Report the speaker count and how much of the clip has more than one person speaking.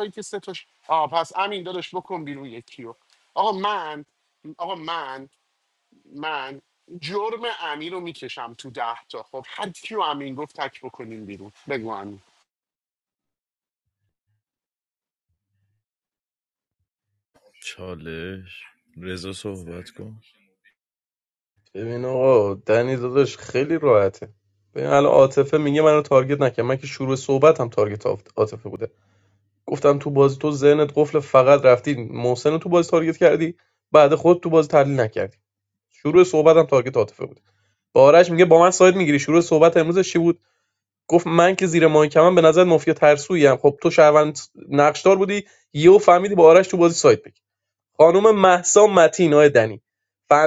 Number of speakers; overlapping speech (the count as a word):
three, no overlap